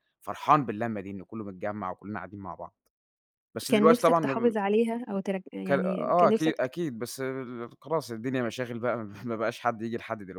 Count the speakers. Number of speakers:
2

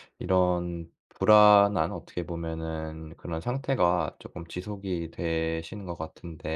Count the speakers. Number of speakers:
1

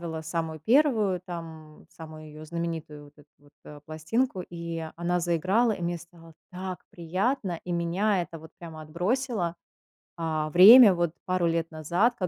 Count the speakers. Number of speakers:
1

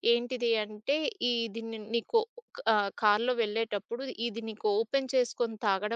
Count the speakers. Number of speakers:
1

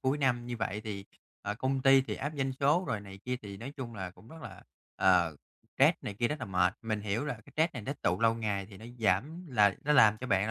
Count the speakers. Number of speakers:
1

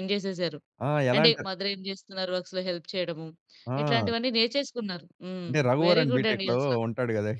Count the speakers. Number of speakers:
2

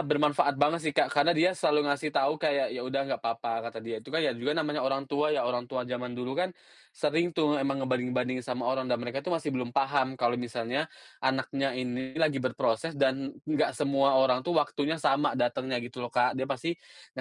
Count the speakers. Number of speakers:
1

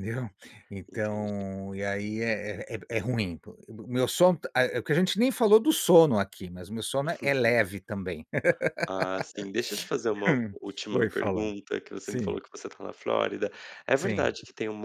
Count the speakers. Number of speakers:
2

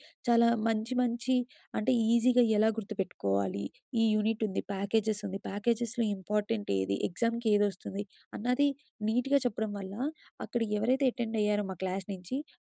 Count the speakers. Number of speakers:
1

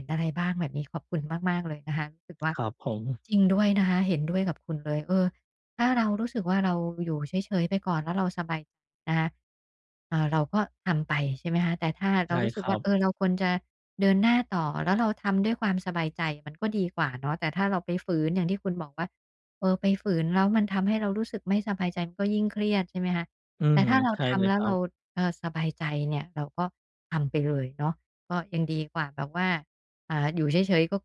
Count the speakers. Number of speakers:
2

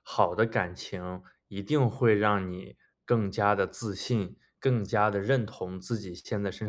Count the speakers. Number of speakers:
1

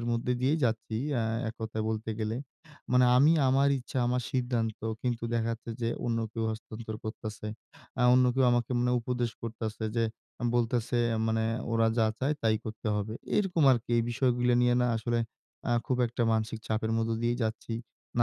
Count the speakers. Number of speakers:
1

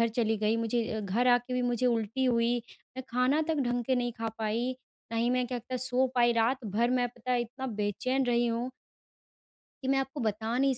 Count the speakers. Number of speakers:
1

